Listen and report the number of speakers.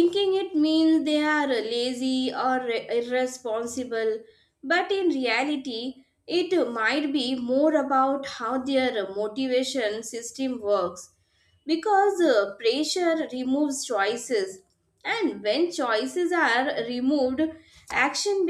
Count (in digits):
1